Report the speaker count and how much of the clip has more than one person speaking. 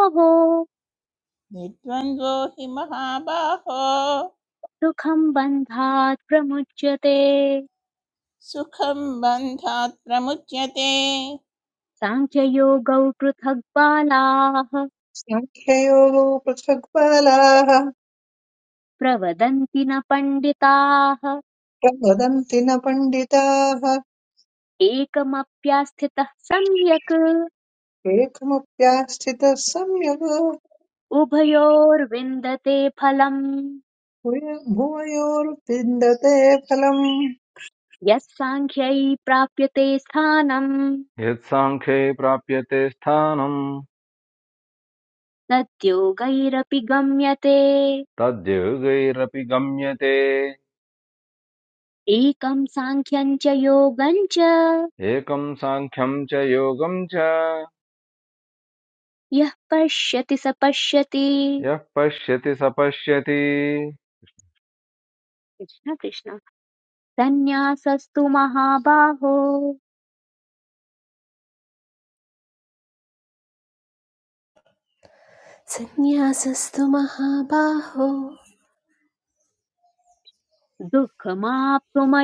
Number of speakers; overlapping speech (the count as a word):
five, no overlap